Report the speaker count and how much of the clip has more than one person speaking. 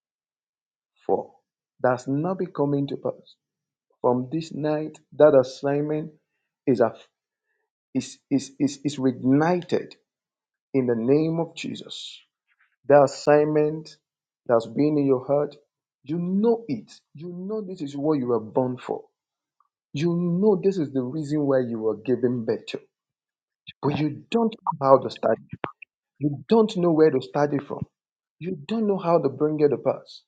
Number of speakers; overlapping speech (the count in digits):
1, no overlap